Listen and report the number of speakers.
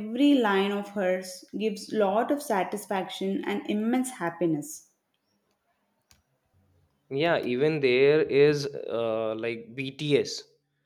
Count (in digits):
2